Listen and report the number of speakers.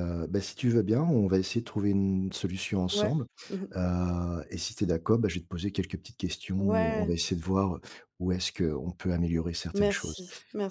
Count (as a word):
two